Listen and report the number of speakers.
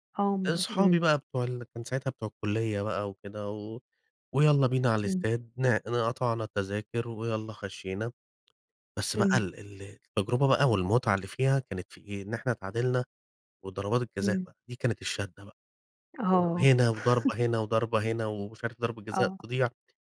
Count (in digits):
2